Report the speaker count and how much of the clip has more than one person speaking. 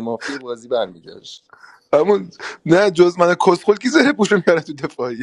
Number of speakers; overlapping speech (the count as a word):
two, no overlap